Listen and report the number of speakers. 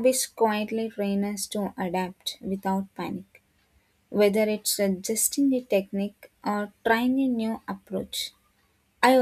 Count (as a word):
one